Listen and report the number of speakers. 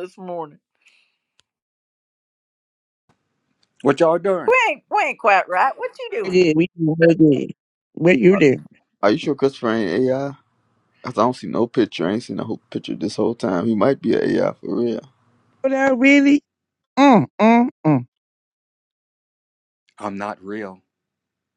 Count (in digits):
4